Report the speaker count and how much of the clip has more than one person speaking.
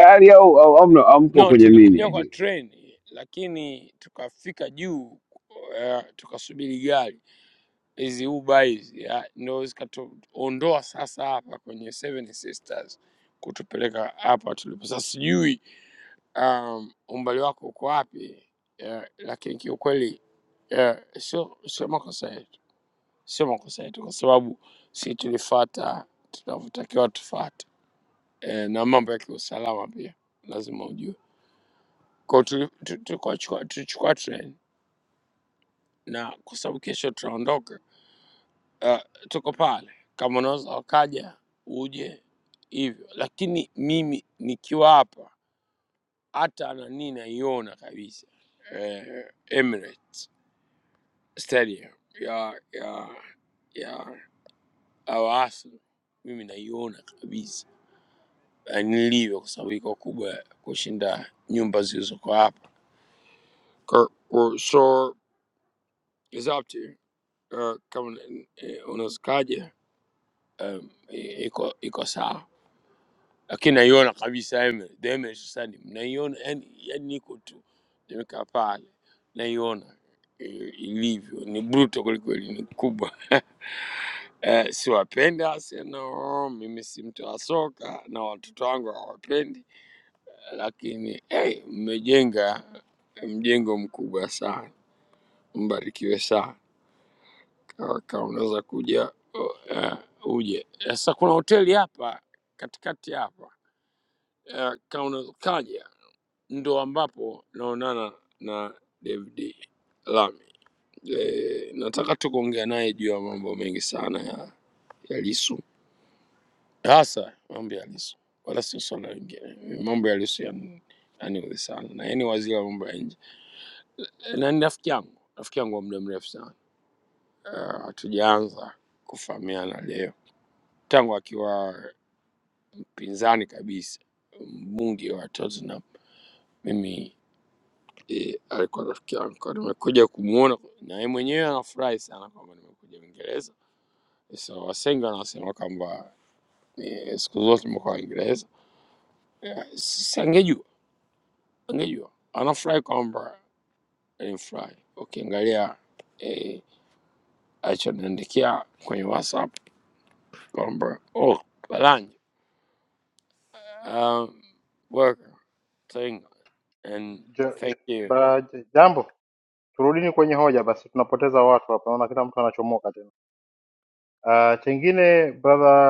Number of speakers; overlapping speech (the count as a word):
three, about 1%